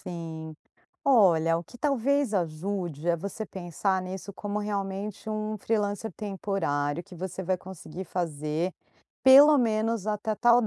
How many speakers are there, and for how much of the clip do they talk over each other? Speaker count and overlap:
1, no overlap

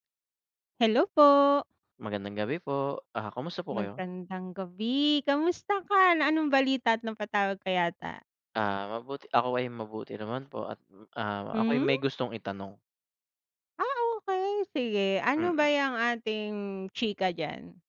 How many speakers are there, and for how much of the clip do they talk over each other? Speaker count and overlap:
2, about 5%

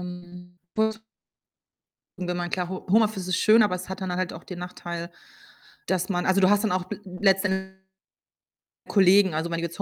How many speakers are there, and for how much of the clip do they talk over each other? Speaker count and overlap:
1, no overlap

